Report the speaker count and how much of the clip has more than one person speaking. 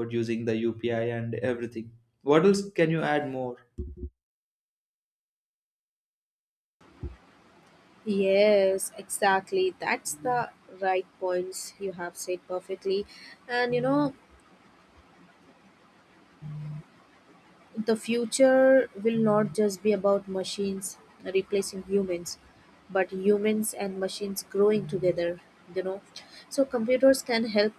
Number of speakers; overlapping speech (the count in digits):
2, no overlap